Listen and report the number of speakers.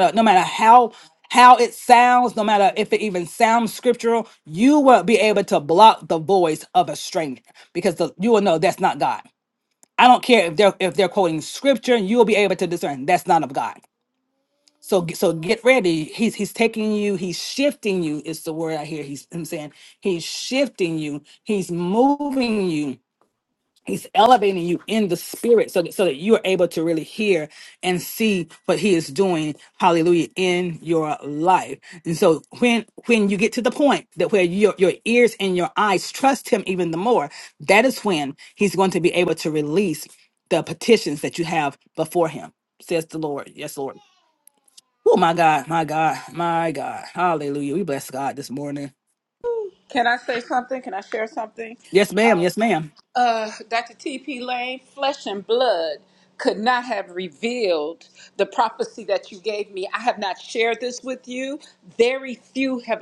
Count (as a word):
two